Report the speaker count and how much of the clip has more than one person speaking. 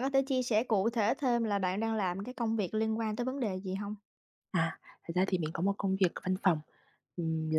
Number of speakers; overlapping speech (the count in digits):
2, no overlap